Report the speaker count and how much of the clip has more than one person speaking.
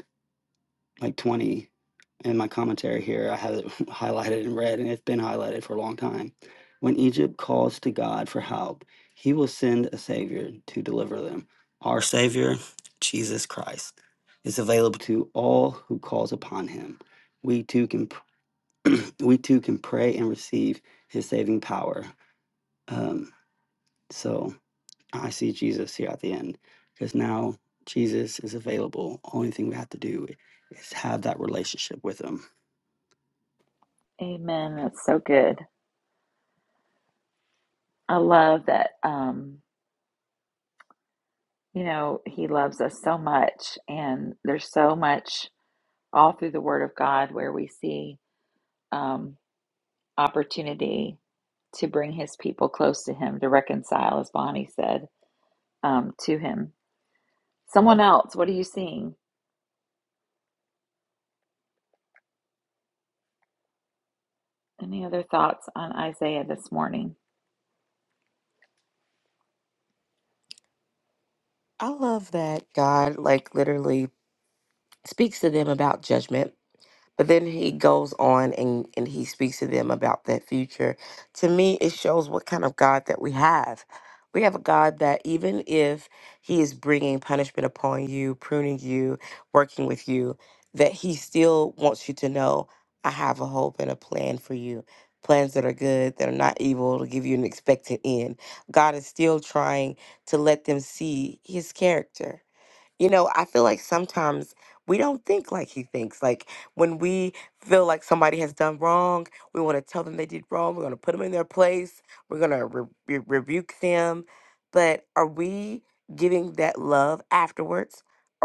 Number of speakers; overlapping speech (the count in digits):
3, no overlap